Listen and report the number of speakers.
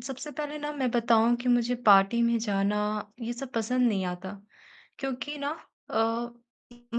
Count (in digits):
1